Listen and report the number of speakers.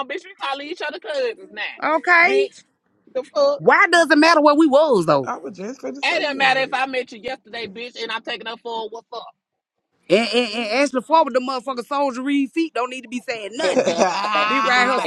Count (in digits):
3